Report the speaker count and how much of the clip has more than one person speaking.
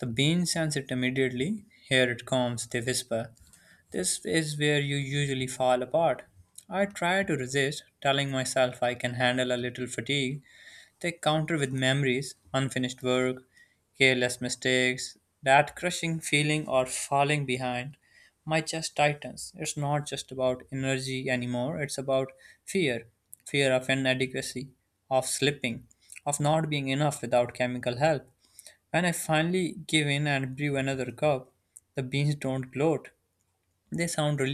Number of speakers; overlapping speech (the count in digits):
1, no overlap